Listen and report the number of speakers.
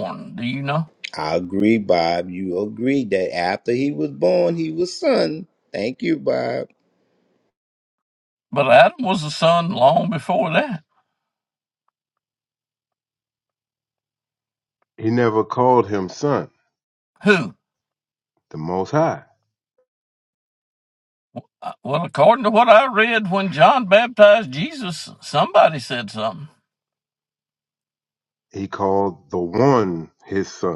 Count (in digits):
3